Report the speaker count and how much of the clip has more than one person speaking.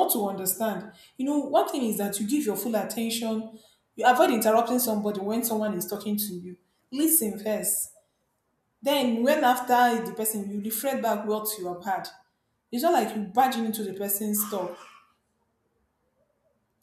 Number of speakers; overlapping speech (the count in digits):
1, no overlap